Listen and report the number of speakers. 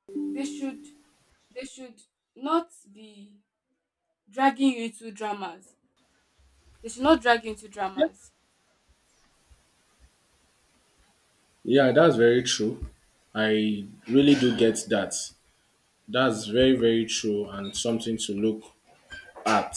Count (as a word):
two